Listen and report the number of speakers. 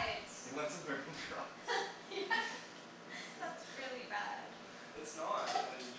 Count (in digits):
3